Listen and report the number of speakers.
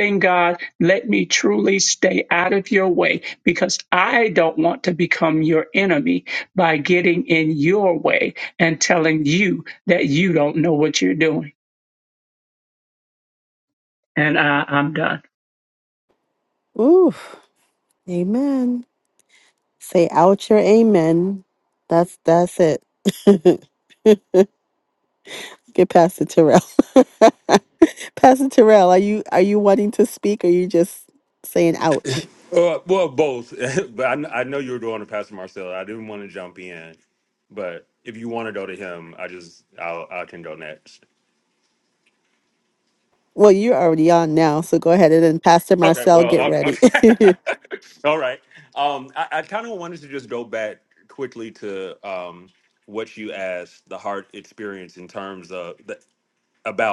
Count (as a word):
three